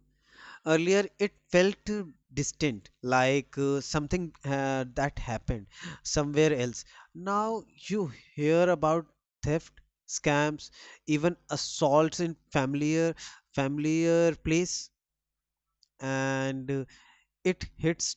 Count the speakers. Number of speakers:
1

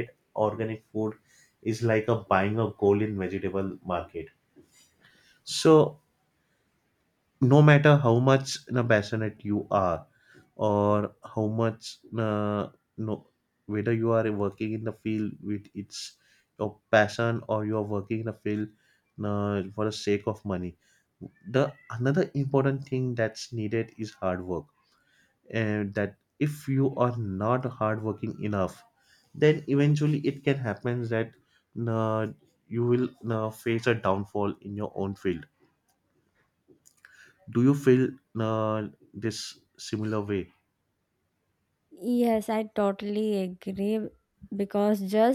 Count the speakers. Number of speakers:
2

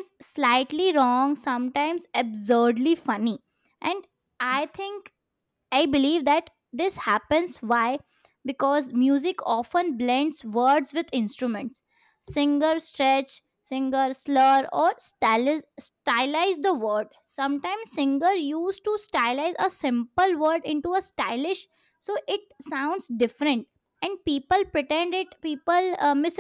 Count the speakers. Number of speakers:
1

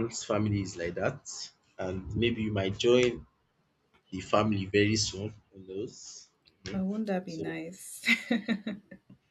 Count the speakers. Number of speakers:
2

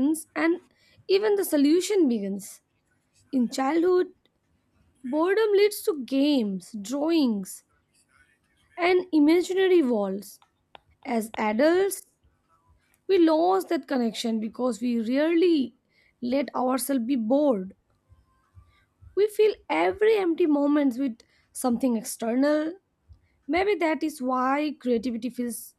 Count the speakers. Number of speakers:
1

